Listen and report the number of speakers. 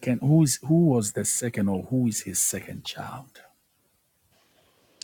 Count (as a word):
one